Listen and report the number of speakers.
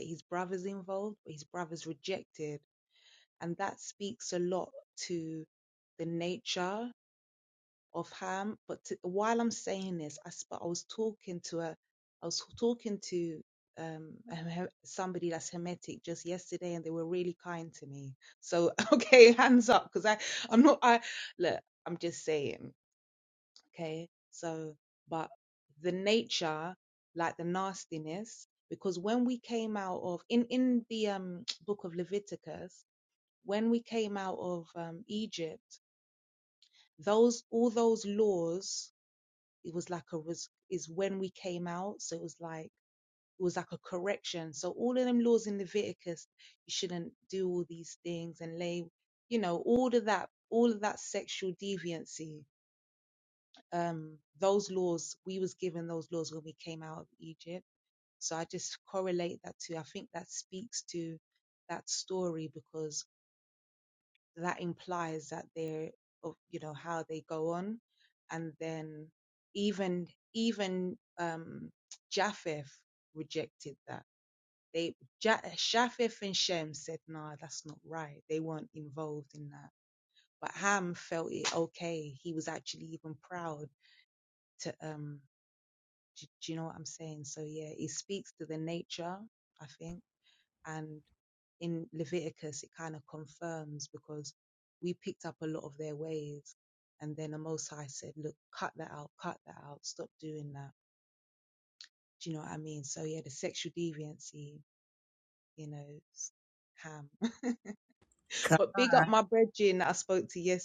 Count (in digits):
1